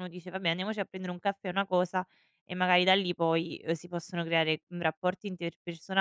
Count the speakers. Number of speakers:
1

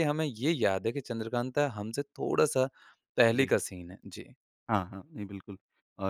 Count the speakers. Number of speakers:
2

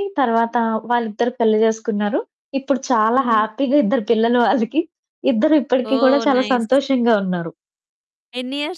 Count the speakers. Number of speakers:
2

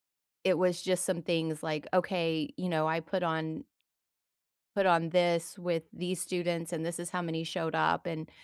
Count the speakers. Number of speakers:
1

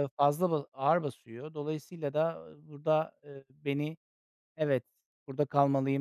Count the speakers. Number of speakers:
1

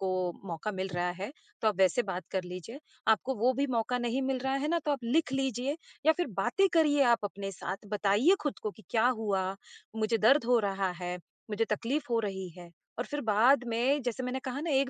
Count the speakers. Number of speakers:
1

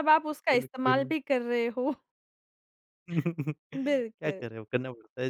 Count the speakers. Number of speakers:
2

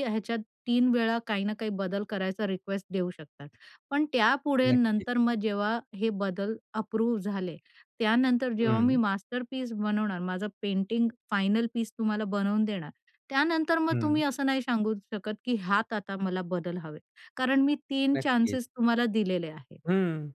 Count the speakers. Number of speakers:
2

